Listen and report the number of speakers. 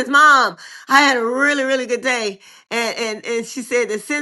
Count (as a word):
one